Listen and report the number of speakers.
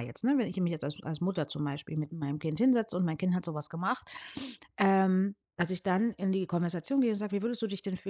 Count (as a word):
one